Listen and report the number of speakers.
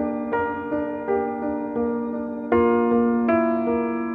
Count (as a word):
zero